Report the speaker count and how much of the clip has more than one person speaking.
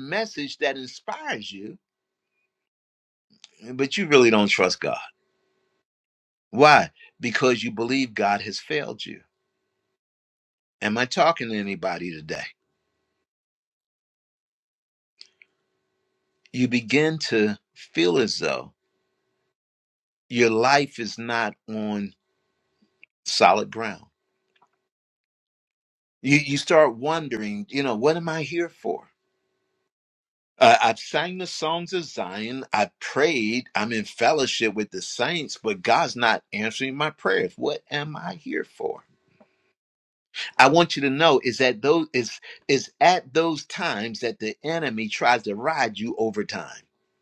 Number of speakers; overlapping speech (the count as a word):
one, no overlap